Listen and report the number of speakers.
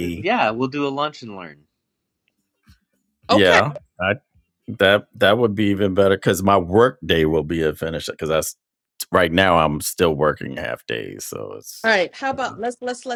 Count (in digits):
3